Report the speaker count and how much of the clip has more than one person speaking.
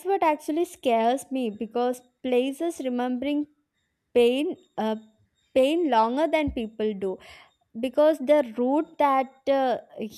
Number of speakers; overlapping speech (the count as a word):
one, no overlap